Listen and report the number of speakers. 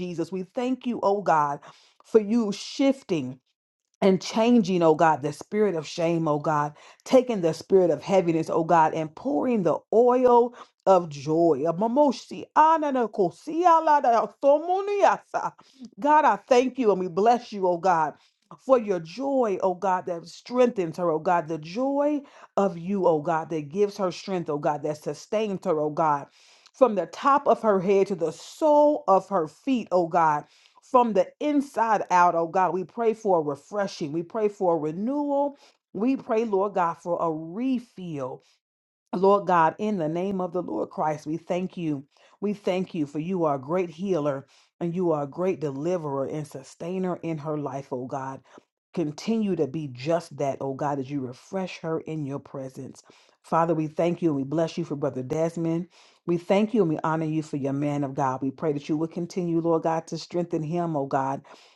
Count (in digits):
1